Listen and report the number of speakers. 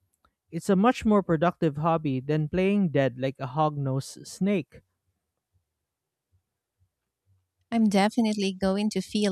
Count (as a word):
two